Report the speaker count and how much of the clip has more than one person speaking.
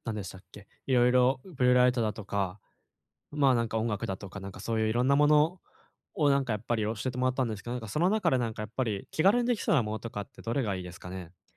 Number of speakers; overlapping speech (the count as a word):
one, no overlap